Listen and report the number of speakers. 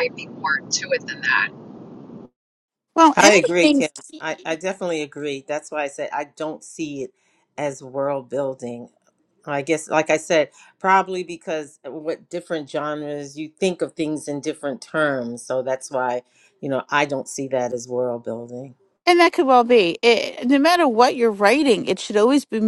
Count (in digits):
3